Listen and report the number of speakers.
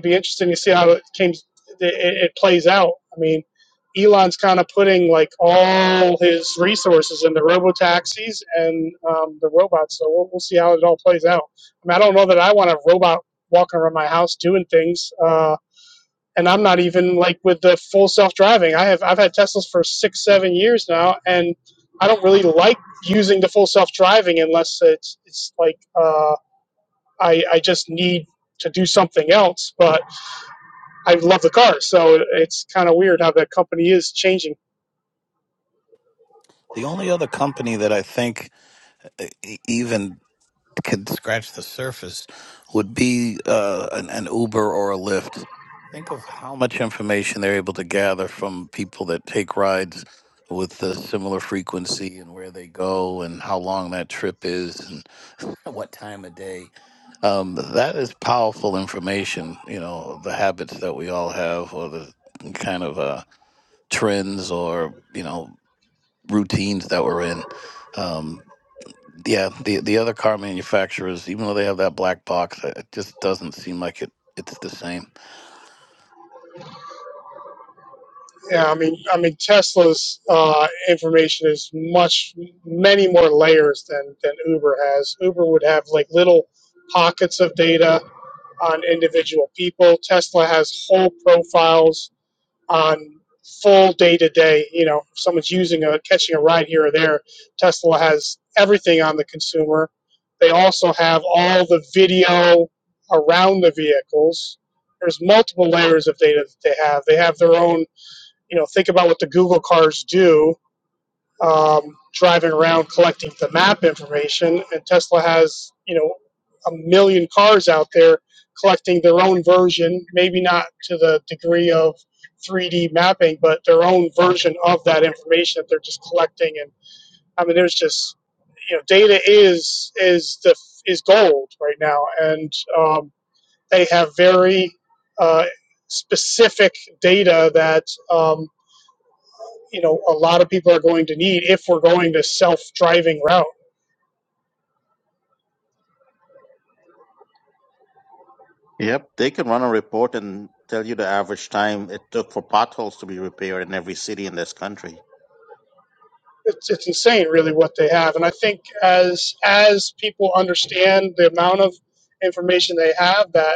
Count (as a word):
three